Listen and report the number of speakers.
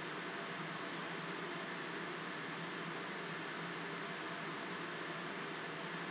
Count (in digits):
0